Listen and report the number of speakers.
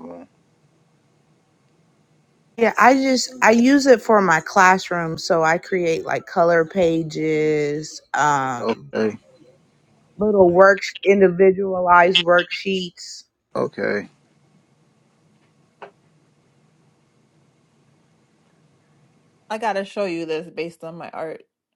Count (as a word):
three